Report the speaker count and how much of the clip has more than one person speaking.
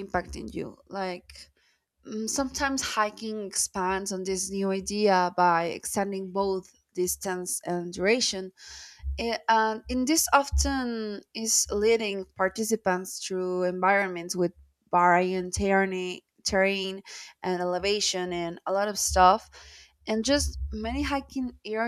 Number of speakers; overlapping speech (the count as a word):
one, no overlap